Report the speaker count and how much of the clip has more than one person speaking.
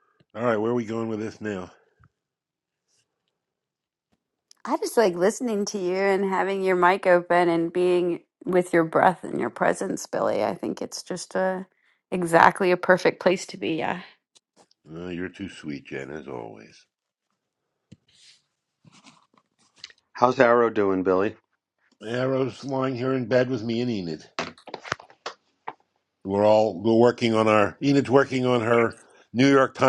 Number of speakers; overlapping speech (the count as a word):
three, no overlap